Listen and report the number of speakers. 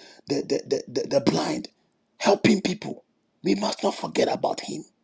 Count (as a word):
one